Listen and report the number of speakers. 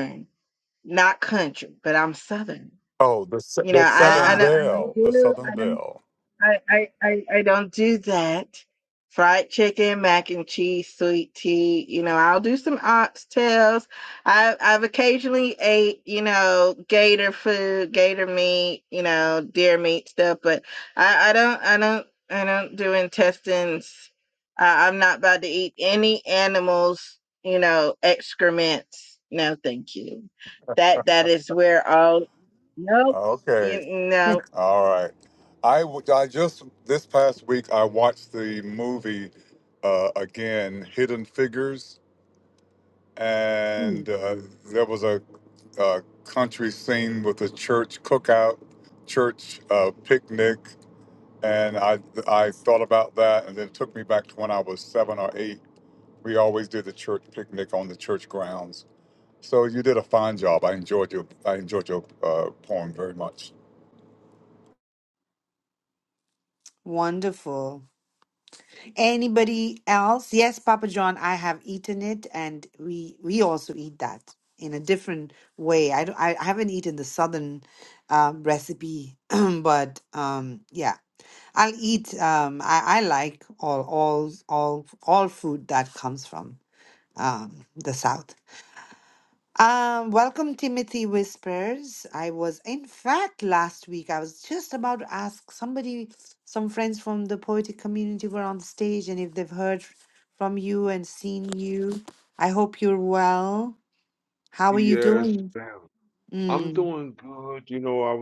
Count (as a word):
four